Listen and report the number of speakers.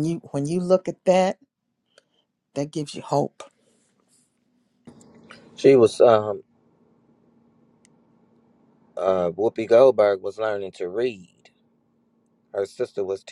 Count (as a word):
two